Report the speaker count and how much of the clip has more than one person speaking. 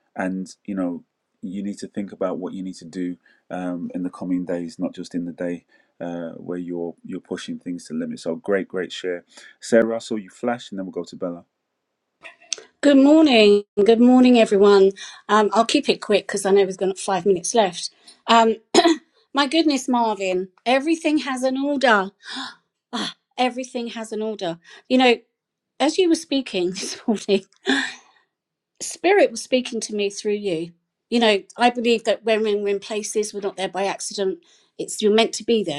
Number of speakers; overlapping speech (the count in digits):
2, no overlap